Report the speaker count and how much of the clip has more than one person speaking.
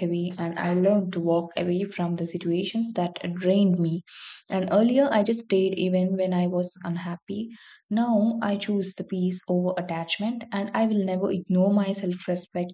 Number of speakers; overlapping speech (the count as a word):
one, no overlap